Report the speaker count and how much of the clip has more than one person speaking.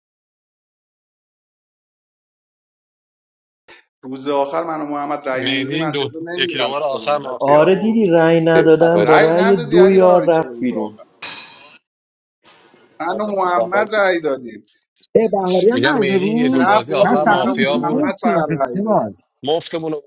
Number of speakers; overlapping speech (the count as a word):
four, about 41%